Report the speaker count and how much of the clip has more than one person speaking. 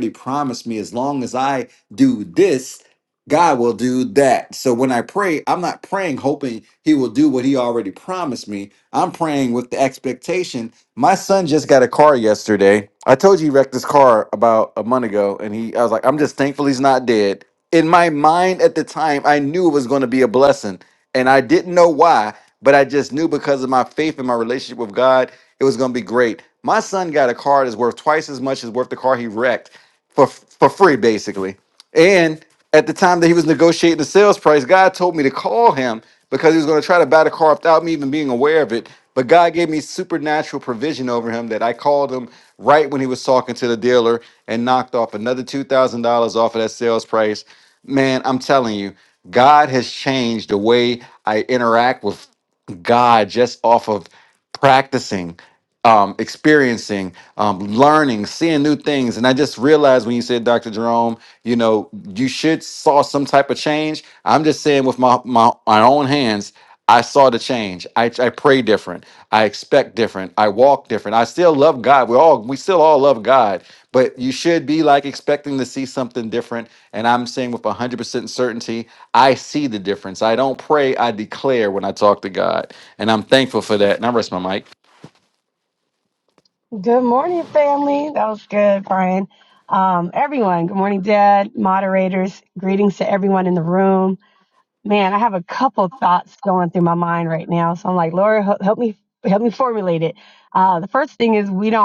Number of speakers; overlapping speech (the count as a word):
two, no overlap